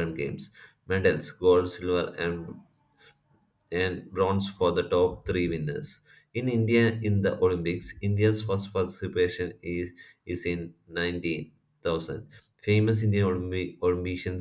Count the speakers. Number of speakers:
one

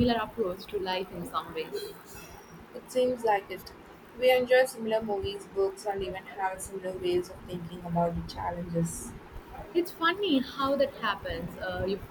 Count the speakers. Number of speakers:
two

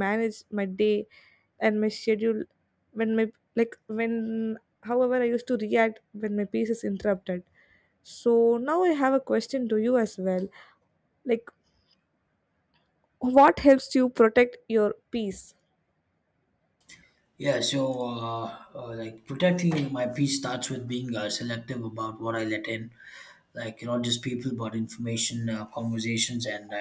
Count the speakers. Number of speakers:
two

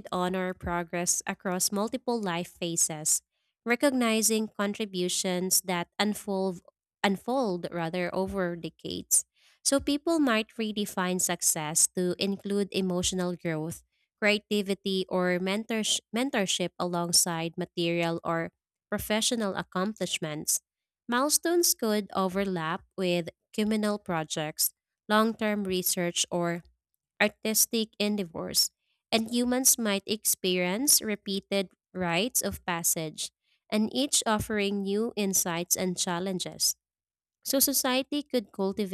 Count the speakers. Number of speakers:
one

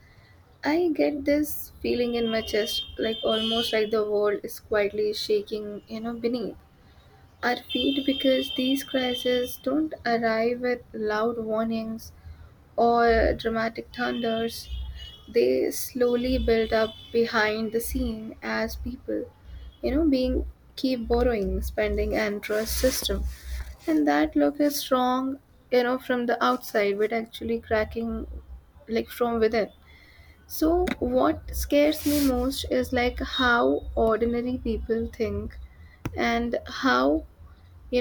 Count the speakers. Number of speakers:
one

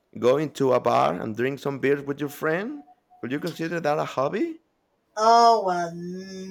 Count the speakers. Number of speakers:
two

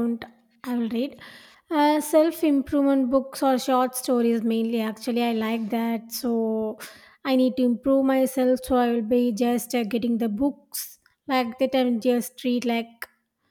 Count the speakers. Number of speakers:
one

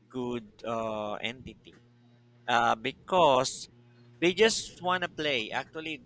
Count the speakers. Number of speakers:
one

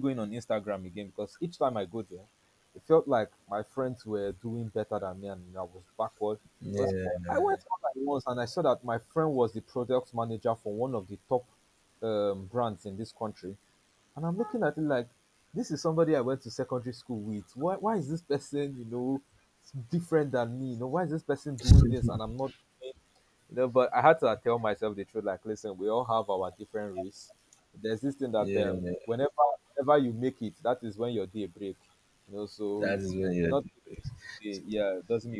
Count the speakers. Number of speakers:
two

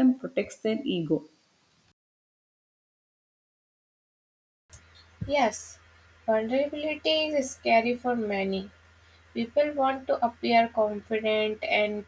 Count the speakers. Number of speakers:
two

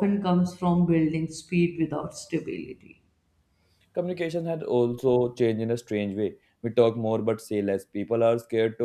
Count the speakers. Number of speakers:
two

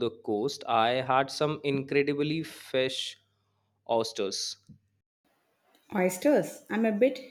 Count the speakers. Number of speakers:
two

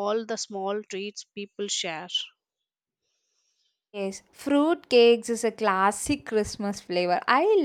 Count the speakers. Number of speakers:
two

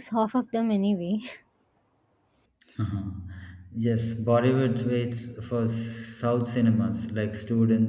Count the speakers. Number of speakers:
two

